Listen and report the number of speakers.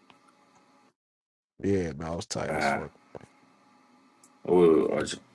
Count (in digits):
2